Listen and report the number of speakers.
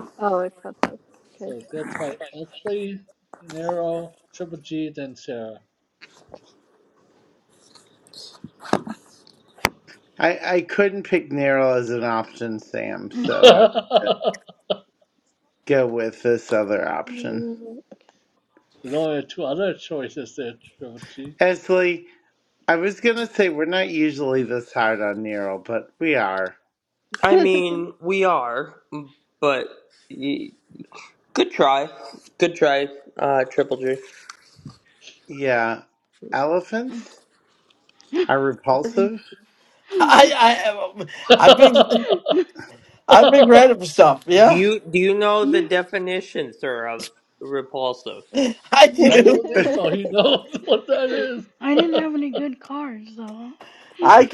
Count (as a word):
six